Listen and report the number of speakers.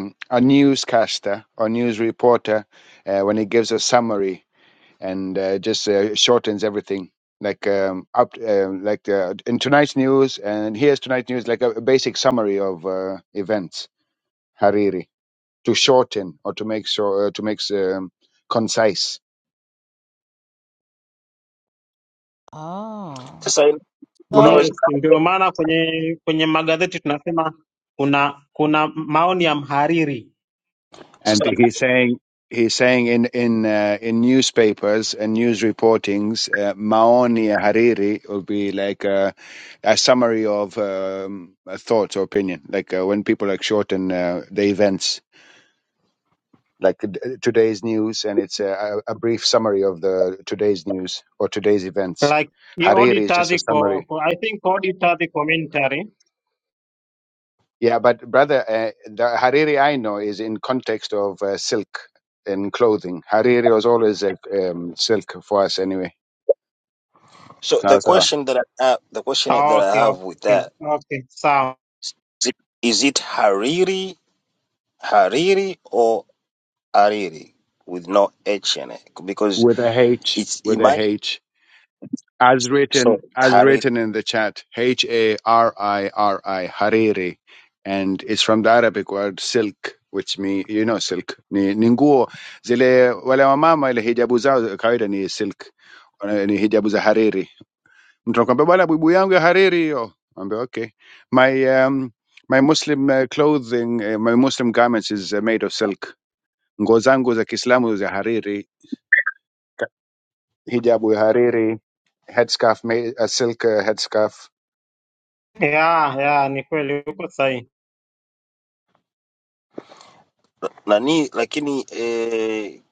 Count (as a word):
four